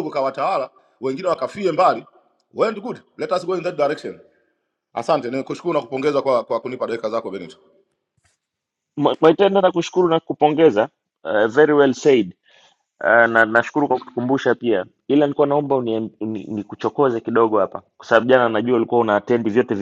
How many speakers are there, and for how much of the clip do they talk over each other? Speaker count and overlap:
two, no overlap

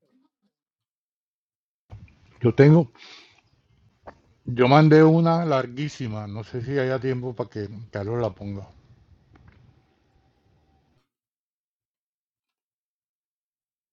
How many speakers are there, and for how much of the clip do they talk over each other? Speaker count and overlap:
one, no overlap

